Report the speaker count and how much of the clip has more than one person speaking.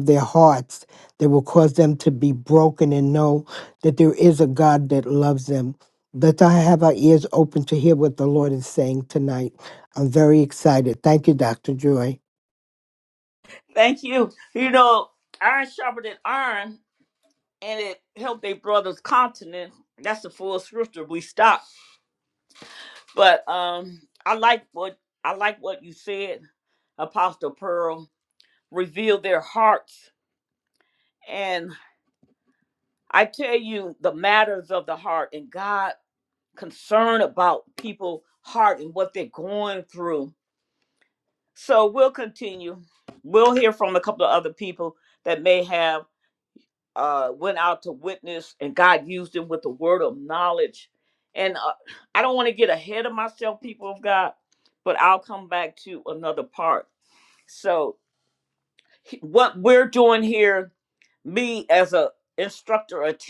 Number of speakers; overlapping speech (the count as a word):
two, no overlap